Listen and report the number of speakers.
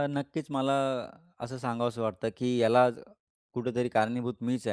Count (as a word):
one